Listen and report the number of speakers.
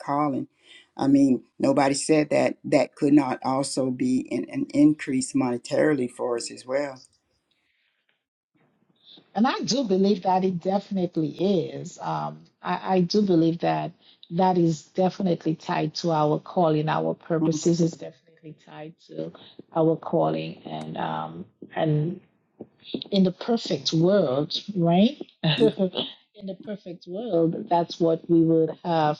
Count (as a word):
two